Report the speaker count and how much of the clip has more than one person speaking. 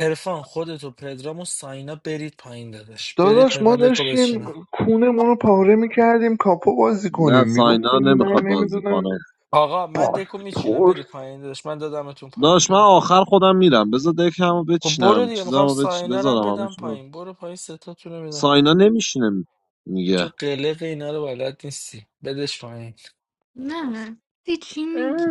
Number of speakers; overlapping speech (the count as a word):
four, about 29%